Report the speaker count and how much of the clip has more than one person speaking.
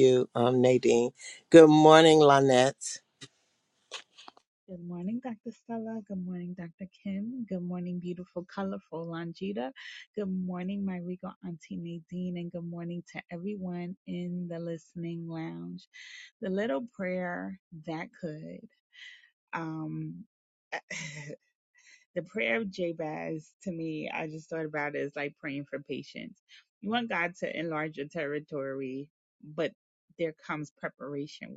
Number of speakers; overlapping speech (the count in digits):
2, no overlap